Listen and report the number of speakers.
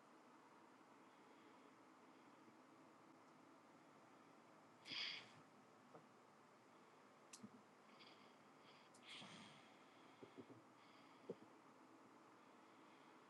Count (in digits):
0